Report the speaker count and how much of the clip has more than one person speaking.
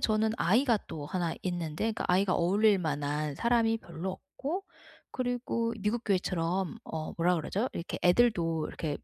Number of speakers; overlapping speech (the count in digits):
1, no overlap